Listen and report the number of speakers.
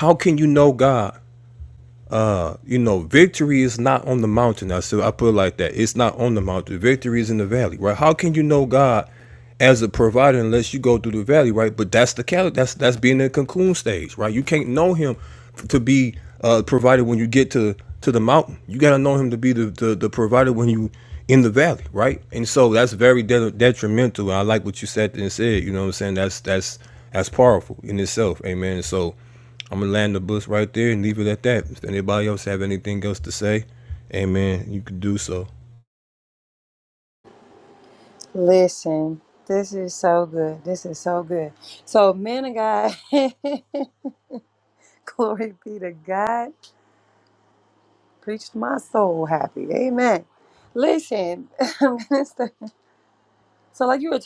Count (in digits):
2